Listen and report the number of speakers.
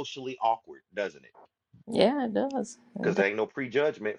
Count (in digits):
2